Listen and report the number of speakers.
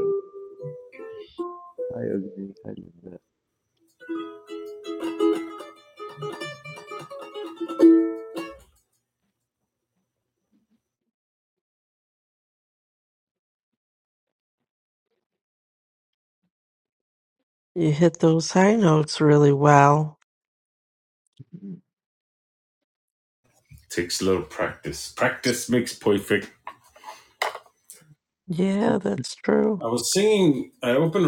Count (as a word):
three